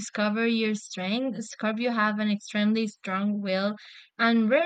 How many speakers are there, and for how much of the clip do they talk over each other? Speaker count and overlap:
one, no overlap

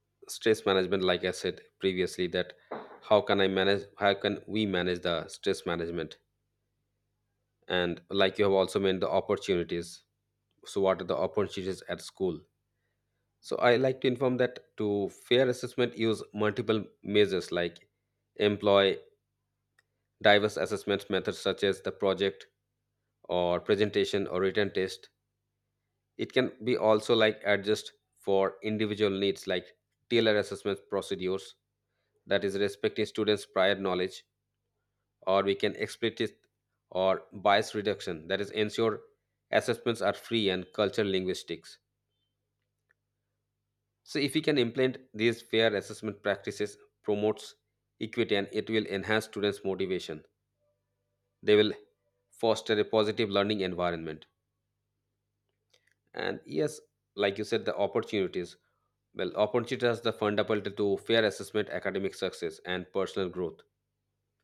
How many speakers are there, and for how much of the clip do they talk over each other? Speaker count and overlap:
one, no overlap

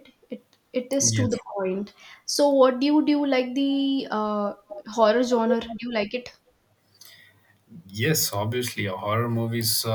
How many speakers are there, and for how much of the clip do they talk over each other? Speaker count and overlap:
two, about 3%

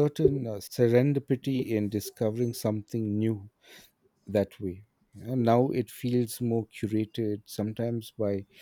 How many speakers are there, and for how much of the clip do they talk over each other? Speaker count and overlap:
one, no overlap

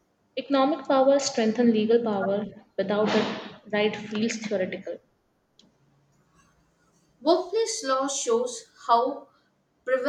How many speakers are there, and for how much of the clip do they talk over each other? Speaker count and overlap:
two, no overlap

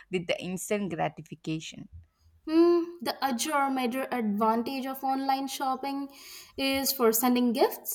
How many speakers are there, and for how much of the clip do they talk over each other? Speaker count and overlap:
two, no overlap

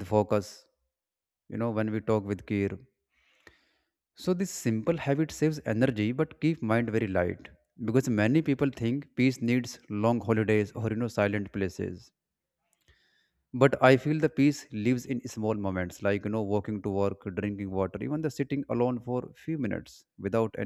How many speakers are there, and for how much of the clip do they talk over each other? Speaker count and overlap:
one, no overlap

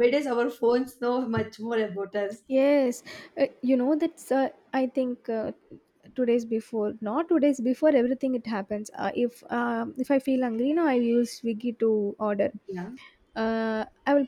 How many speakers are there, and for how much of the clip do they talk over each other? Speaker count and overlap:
two, no overlap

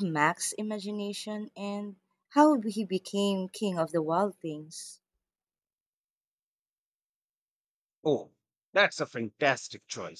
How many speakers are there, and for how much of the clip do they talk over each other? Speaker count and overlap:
two, no overlap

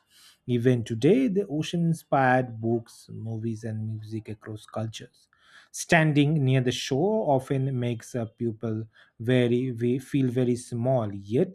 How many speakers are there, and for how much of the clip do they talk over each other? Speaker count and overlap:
one, no overlap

